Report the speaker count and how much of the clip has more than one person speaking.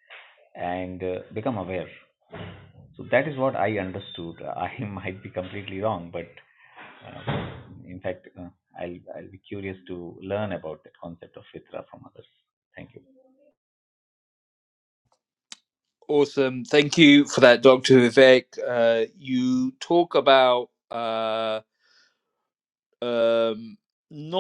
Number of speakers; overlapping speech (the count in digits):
2, no overlap